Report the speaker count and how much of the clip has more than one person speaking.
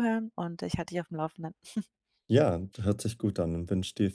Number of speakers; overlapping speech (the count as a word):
two, no overlap